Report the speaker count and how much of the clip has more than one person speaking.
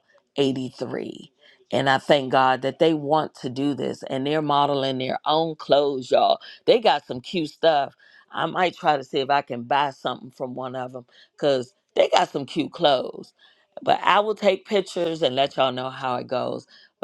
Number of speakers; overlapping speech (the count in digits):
1, no overlap